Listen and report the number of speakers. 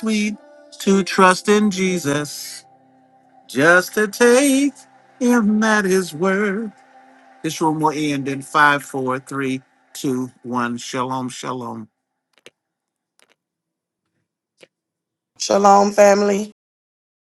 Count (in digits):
2